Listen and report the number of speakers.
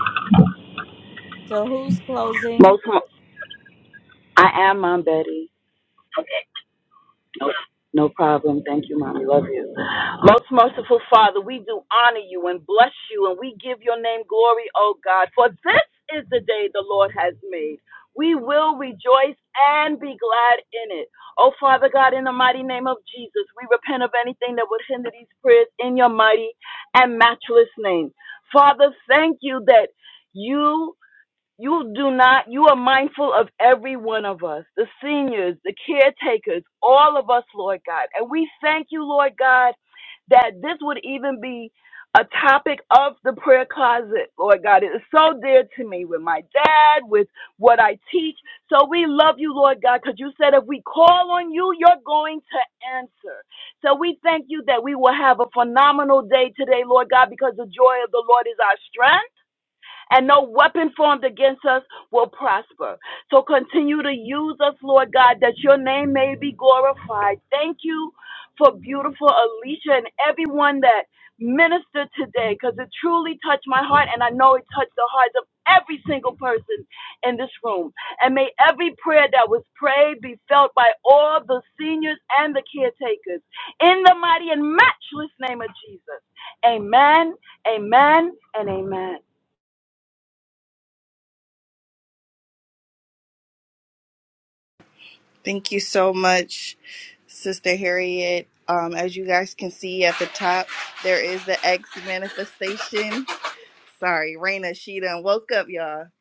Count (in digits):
3